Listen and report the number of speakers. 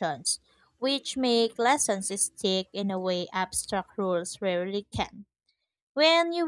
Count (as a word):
one